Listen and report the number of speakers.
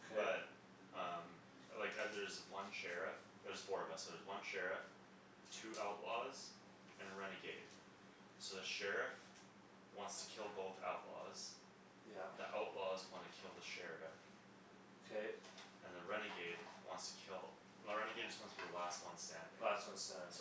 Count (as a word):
two